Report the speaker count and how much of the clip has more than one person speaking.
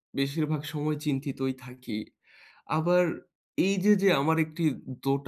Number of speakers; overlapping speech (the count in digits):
1, no overlap